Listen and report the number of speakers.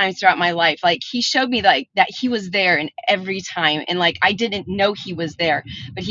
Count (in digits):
1